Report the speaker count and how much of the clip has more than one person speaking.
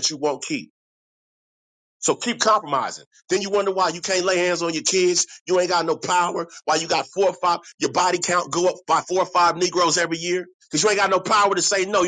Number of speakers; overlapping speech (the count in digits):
1, no overlap